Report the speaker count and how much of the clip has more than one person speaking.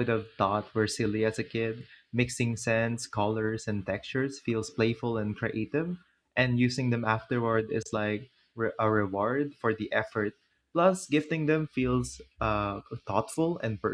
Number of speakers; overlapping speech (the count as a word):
one, no overlap